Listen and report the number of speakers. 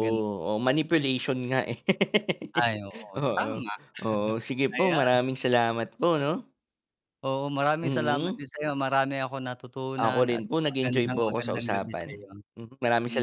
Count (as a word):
two